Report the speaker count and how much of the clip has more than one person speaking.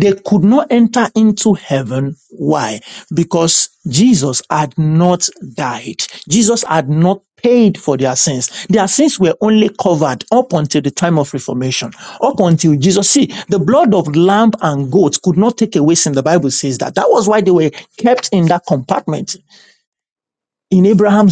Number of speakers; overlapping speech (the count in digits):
1, no overlap